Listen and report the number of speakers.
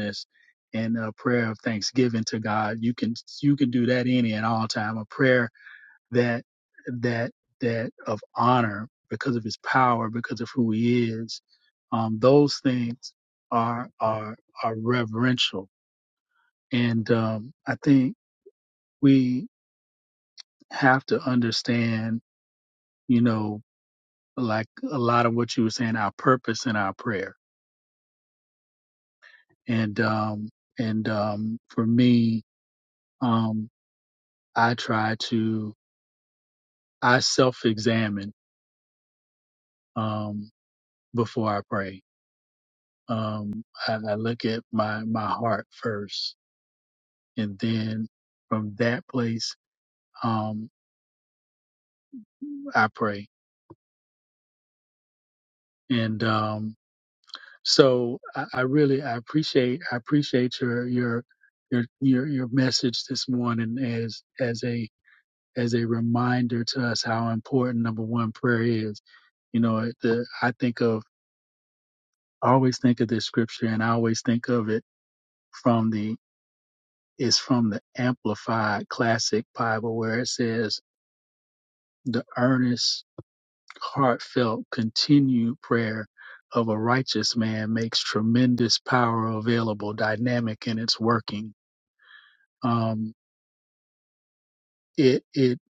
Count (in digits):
1